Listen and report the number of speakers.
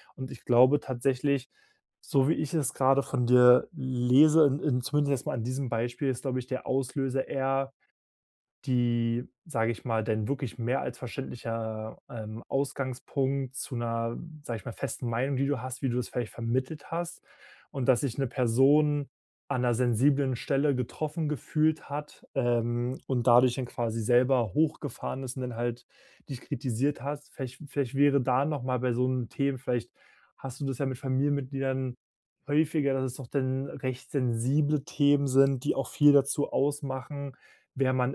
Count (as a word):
one